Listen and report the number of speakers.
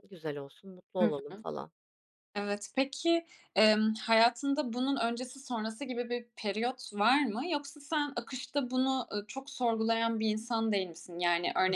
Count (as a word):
two